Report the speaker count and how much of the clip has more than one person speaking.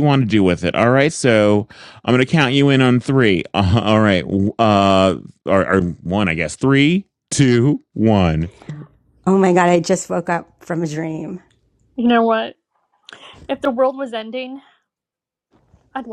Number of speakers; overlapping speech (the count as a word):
three, no overlap